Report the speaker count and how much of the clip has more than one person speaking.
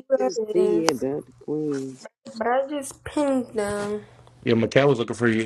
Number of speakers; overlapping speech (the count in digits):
3, about 6%